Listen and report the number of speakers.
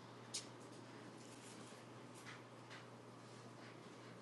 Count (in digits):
0